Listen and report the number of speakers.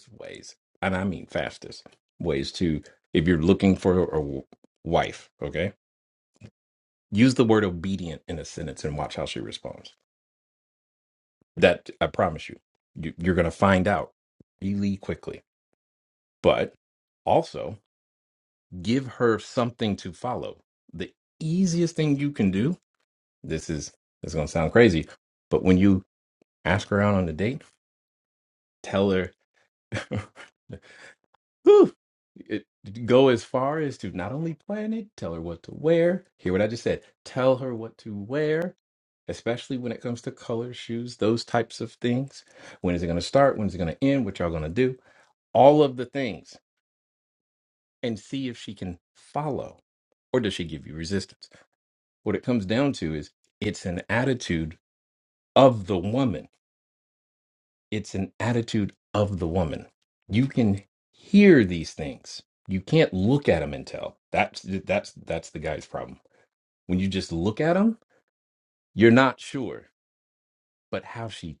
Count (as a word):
one